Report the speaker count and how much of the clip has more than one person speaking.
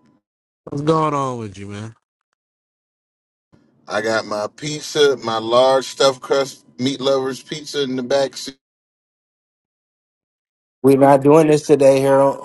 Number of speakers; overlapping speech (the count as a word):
three, no overlap